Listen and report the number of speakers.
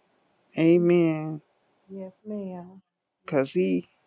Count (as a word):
two